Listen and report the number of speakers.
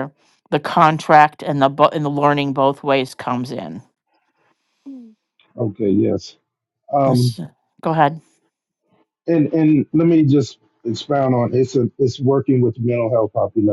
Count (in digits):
2